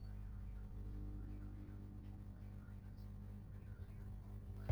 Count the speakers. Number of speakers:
0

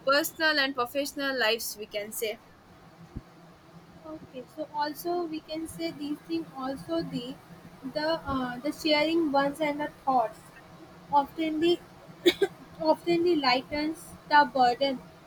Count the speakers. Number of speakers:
2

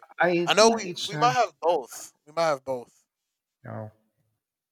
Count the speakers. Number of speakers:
2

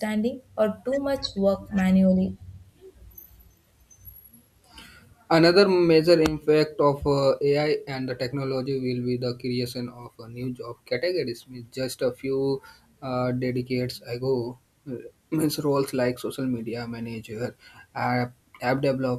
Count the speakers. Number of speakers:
2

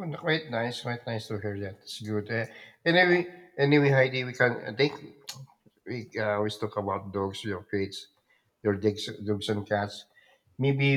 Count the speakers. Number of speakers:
1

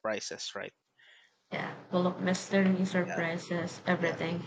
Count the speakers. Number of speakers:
2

